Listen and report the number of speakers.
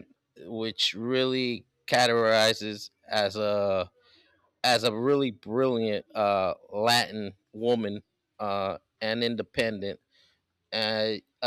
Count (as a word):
one